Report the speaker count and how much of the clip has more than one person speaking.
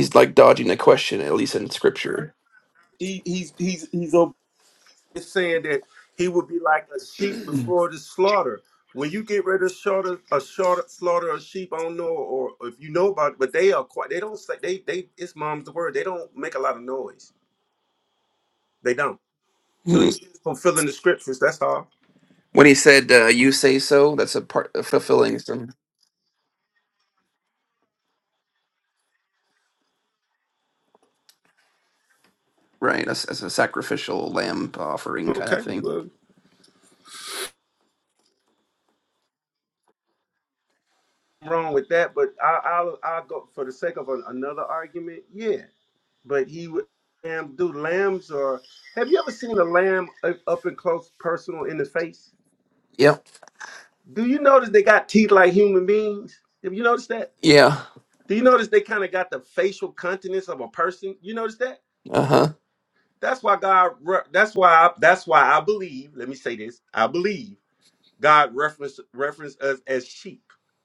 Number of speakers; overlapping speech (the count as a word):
two, about 1%